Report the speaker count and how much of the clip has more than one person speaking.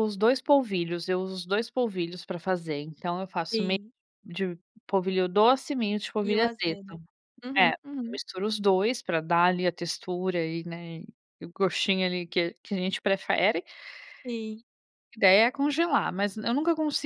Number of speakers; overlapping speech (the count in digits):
2, about 8%